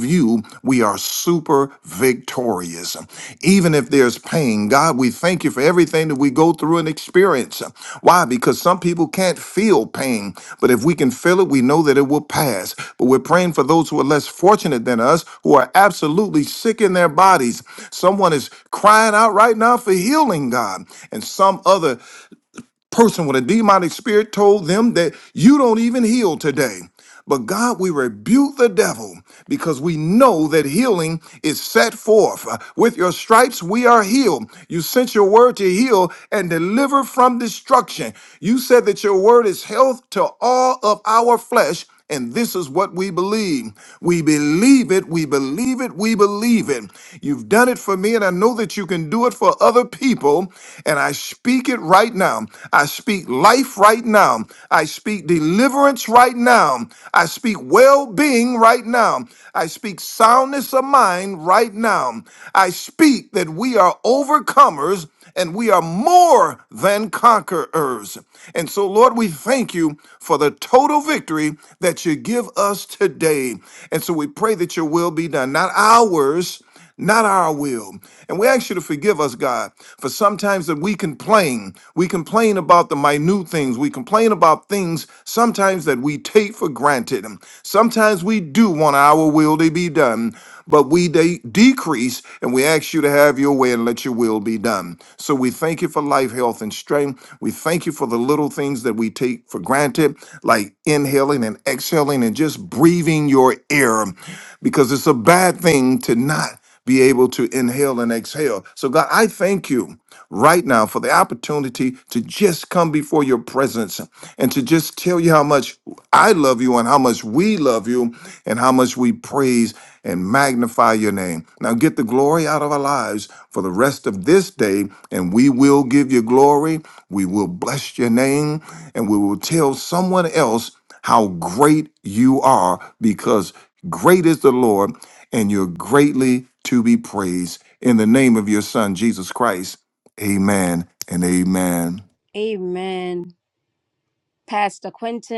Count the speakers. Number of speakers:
2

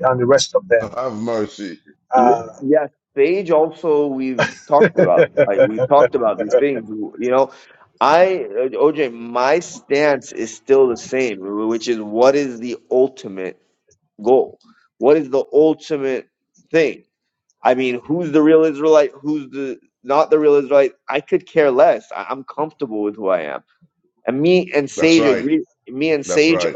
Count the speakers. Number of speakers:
3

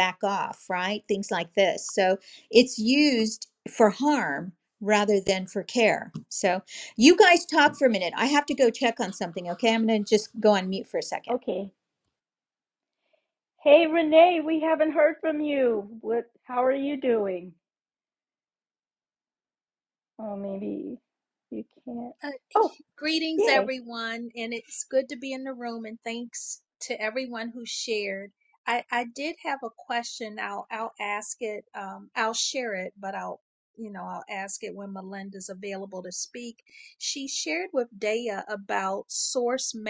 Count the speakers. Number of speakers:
3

